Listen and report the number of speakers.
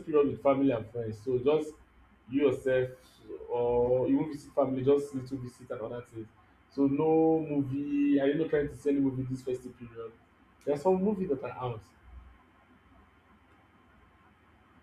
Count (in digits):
1